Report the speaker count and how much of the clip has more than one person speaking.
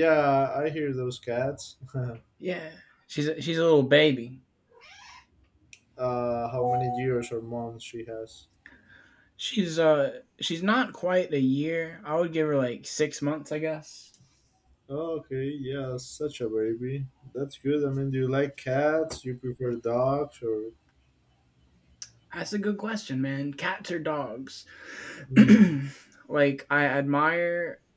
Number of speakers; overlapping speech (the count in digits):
2, no overlap